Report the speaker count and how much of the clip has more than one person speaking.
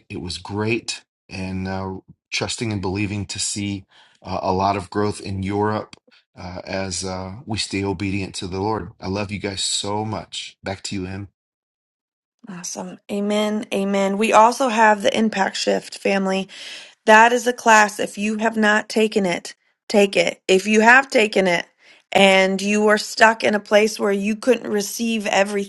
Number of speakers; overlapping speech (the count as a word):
two, no overlap